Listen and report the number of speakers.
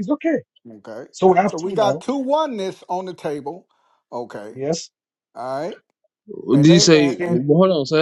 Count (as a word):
three